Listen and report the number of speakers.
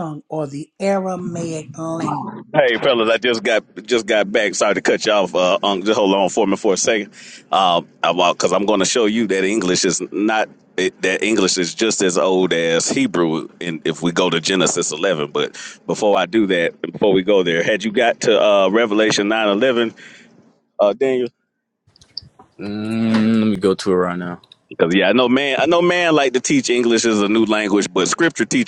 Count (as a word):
three